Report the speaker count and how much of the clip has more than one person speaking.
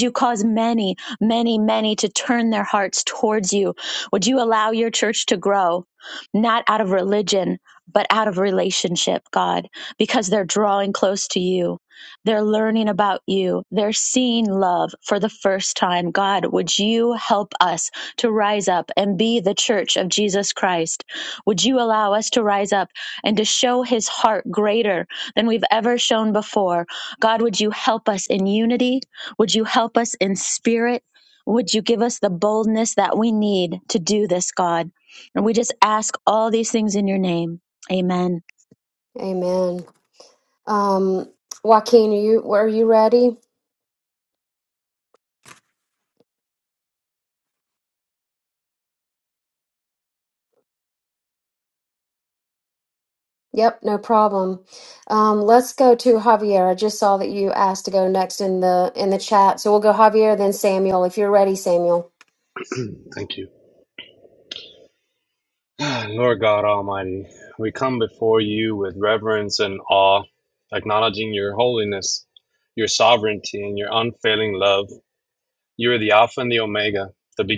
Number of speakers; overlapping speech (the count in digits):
3, no overlap